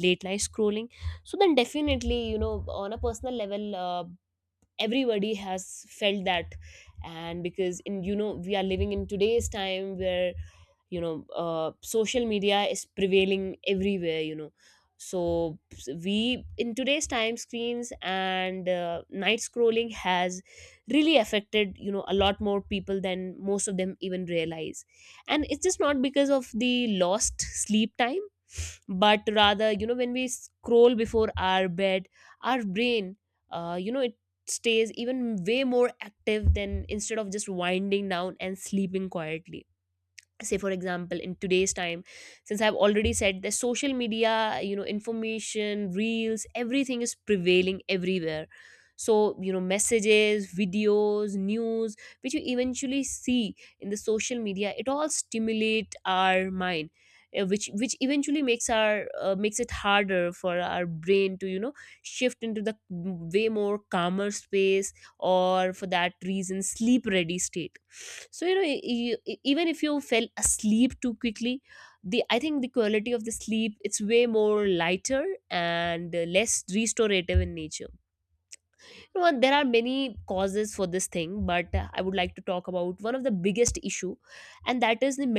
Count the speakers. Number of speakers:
1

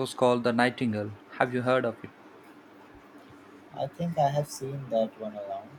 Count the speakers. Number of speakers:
2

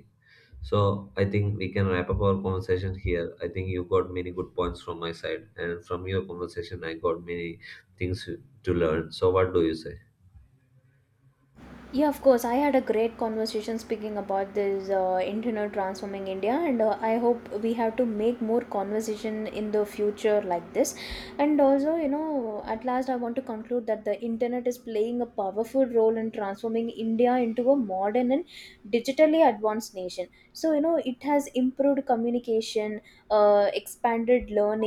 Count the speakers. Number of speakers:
2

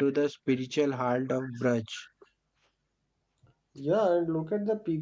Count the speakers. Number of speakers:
2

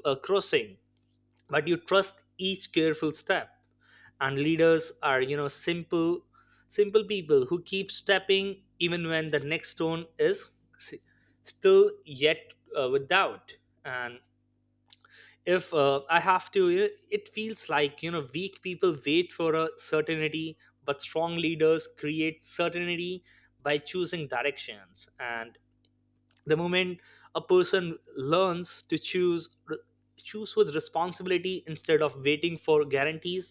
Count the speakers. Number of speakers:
1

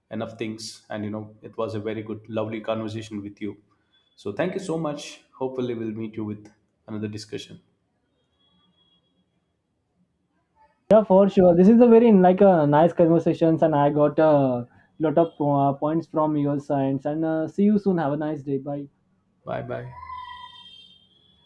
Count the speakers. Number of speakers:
2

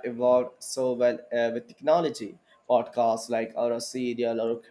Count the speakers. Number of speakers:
1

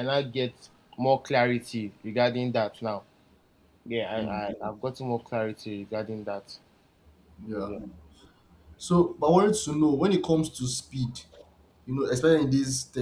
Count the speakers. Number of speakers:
2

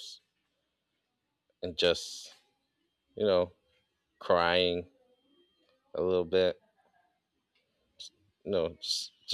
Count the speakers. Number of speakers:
1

